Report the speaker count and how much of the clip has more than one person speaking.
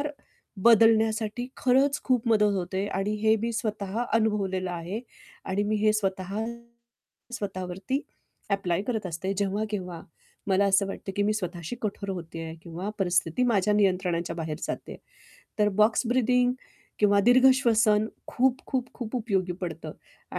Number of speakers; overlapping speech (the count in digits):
1, no overlap